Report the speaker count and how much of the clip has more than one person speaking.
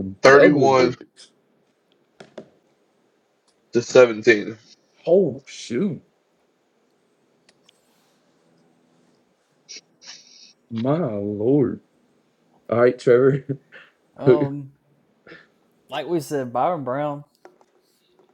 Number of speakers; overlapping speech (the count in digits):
3, about 4%